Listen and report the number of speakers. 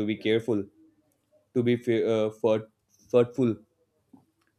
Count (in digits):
1